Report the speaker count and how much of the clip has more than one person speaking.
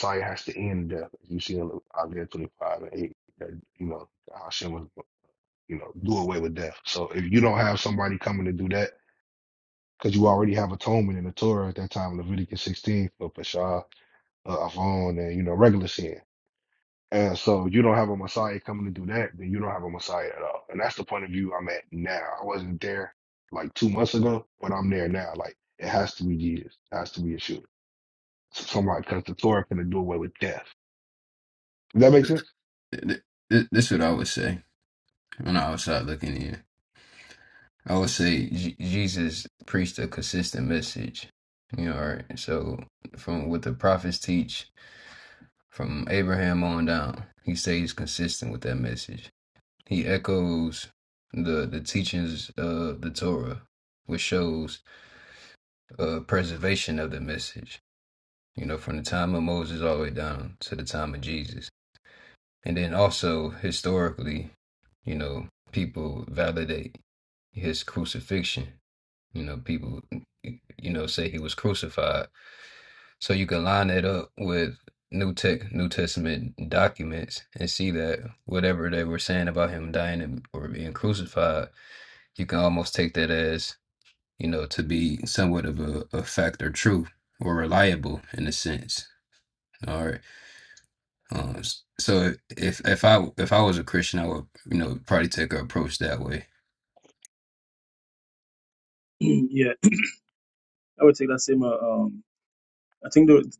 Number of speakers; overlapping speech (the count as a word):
three, no overlap